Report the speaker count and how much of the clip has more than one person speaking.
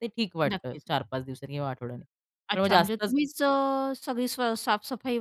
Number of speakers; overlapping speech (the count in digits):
2, about 17%